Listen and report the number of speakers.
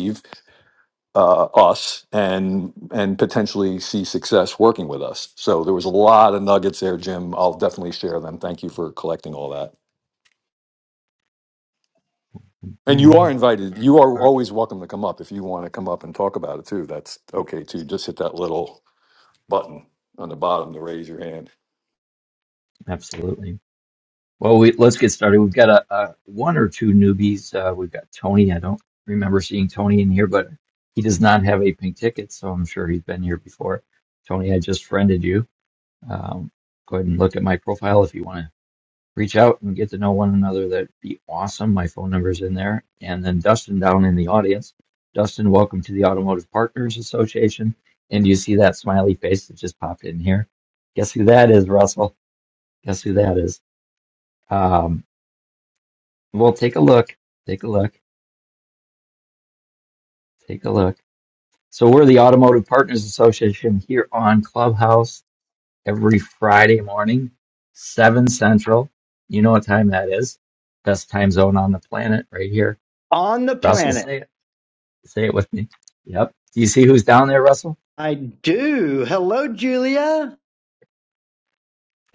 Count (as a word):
three